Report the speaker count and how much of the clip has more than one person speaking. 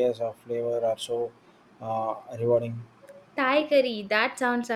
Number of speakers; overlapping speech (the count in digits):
2, no overlap